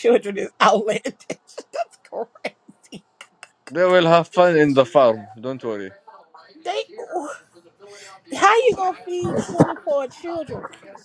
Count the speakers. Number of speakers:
2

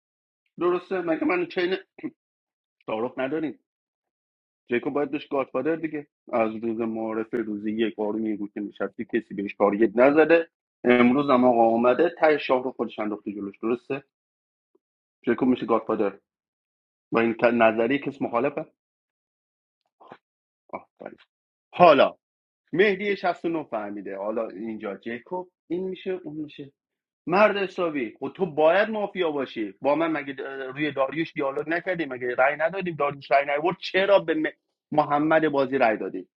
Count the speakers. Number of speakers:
1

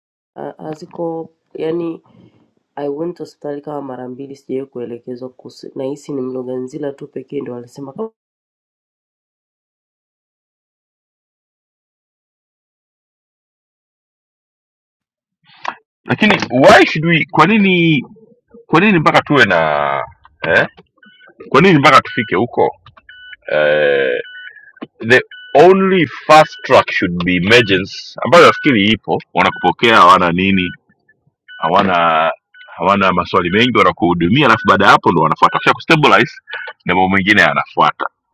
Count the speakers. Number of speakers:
2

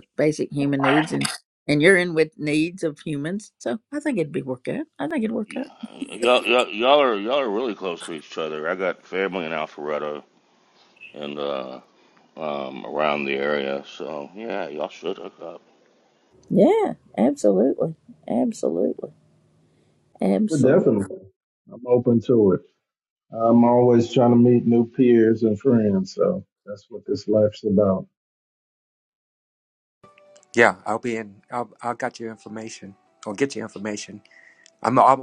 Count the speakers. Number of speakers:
4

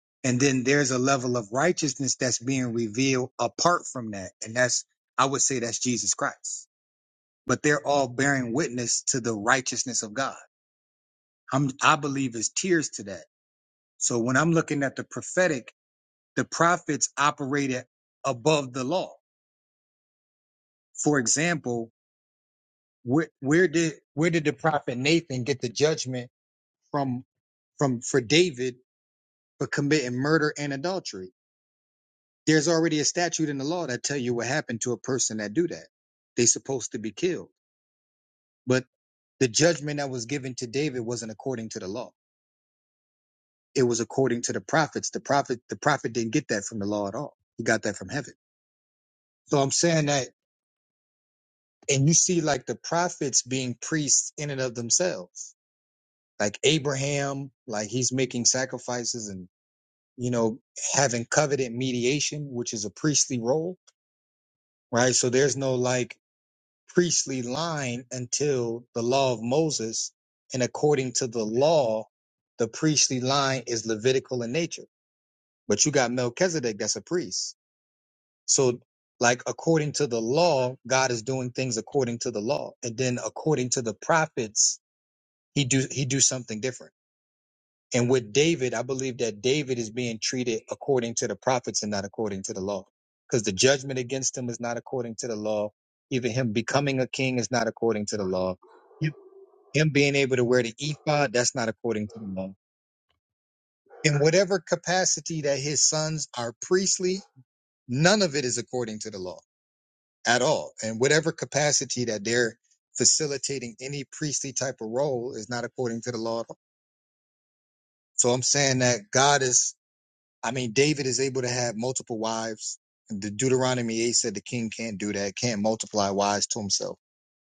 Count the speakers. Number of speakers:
1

